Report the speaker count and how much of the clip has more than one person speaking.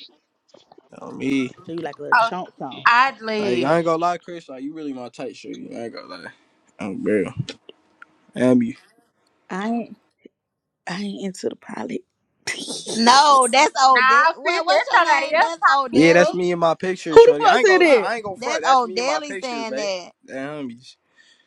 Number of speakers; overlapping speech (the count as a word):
four, about 25%